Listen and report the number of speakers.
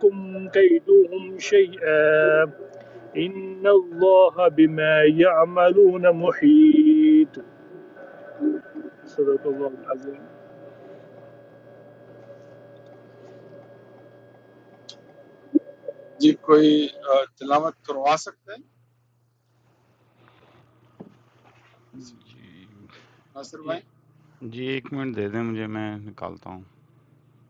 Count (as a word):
three